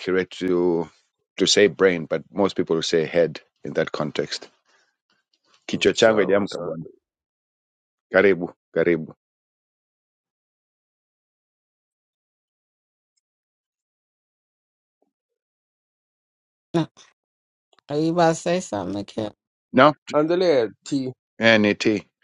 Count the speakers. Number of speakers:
3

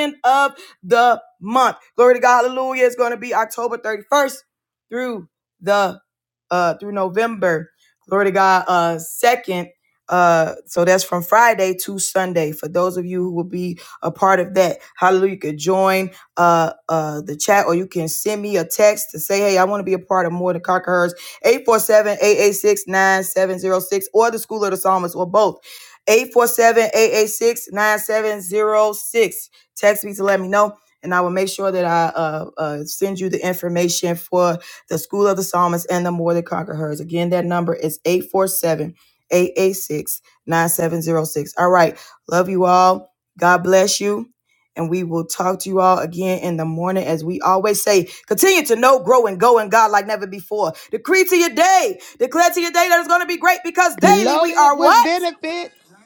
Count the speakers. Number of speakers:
2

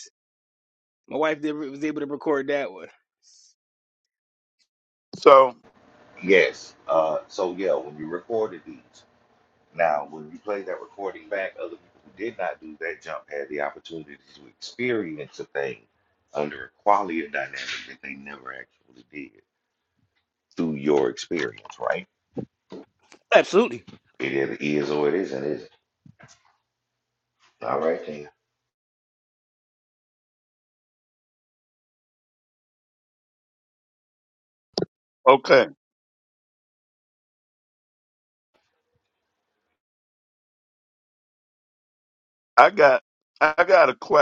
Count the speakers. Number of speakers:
3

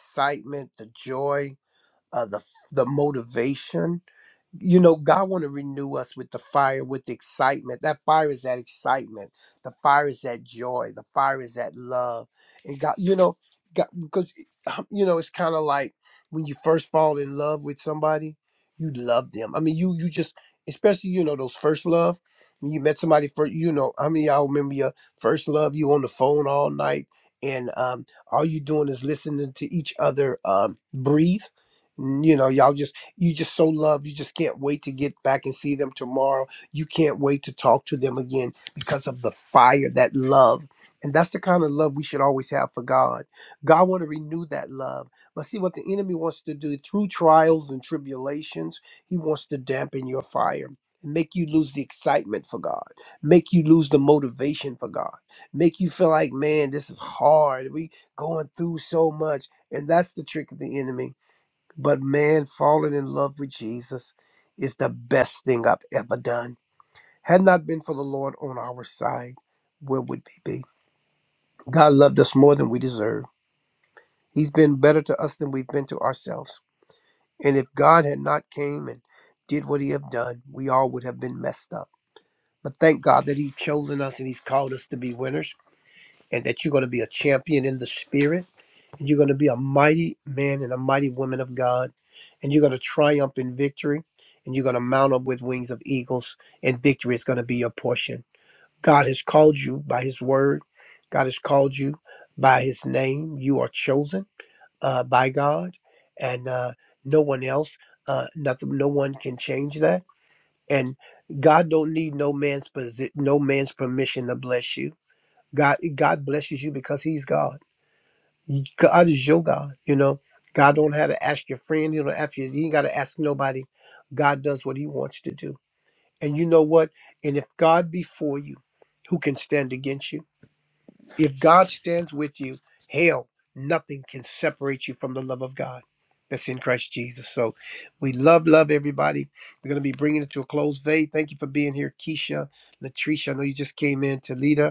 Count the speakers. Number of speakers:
1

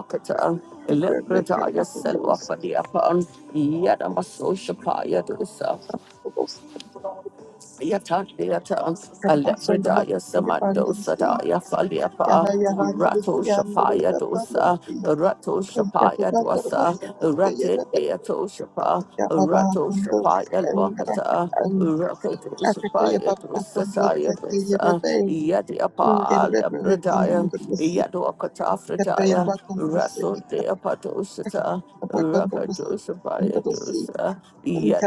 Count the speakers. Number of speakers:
2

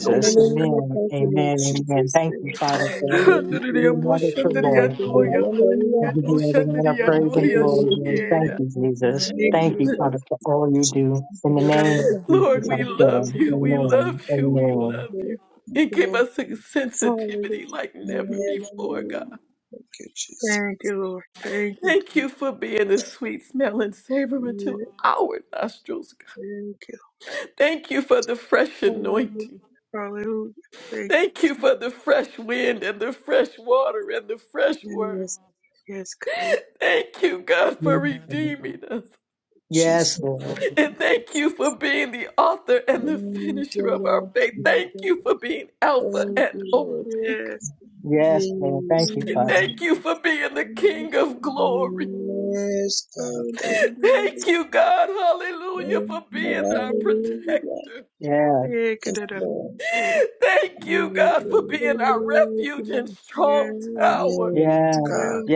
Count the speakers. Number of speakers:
4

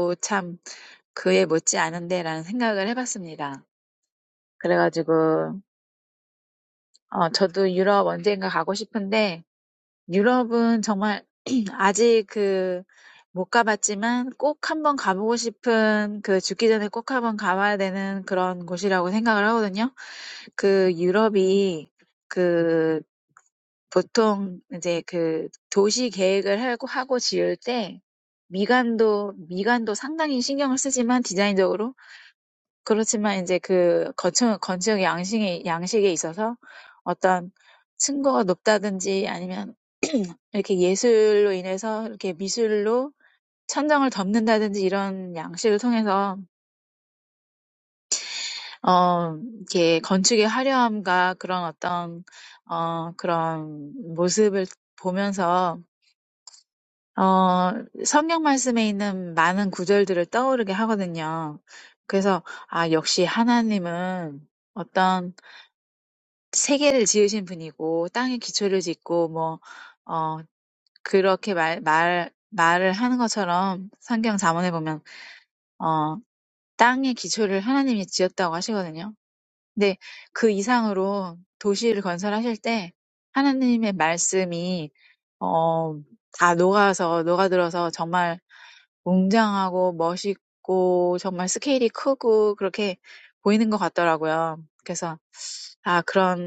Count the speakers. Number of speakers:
1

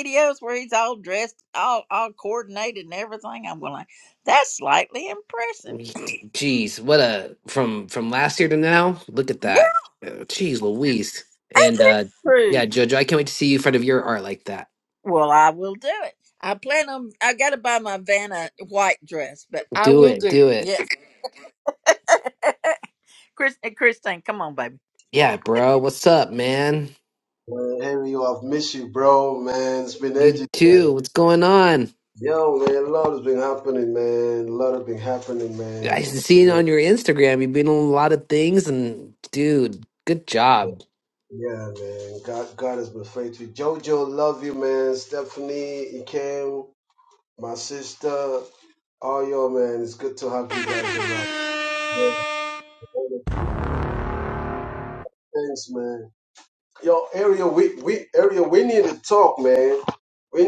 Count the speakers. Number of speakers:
3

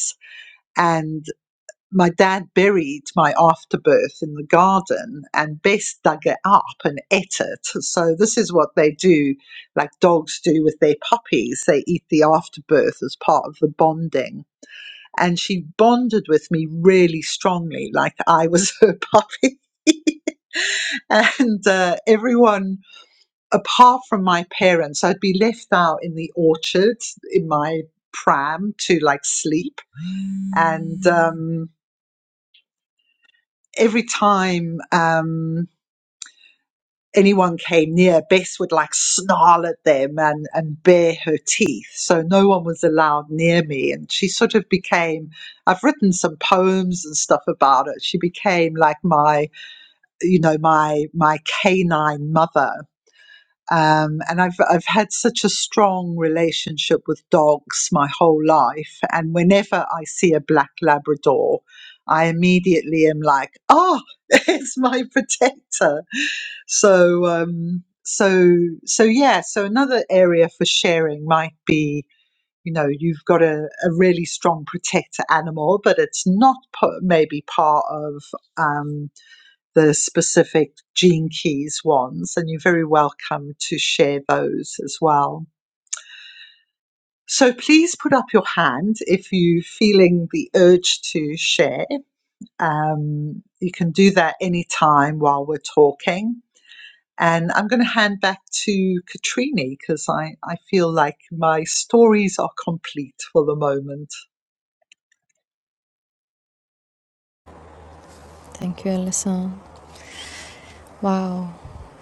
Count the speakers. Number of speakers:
2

